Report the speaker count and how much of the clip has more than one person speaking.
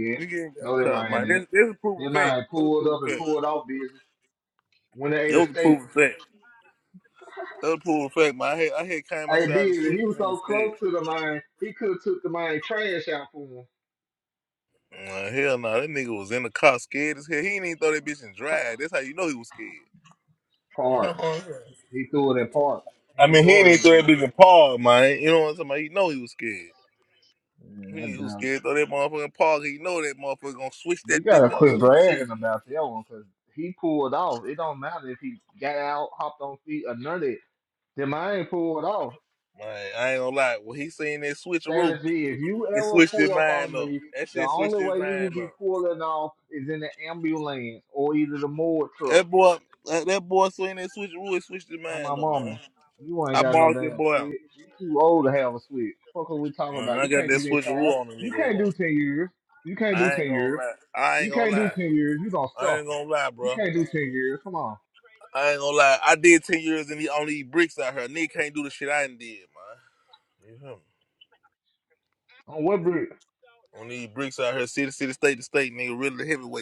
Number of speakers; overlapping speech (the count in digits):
2, about 20%